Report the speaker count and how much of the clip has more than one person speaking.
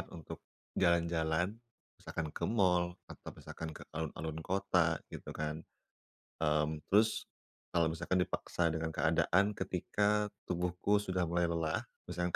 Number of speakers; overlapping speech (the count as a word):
one, no overlap